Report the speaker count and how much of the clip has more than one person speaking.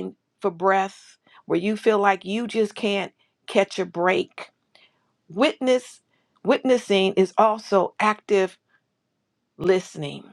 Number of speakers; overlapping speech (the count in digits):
1, no overlap